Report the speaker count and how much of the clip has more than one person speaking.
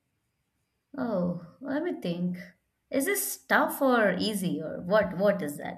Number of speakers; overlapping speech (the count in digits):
1, no overlap